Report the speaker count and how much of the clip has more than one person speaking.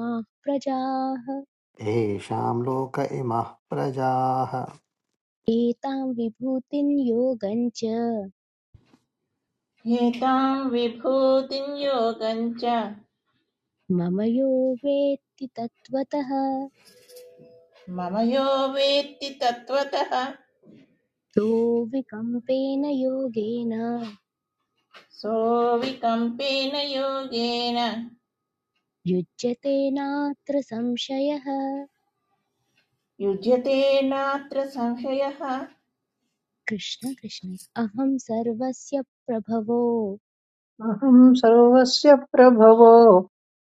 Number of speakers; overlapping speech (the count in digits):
4, no overlap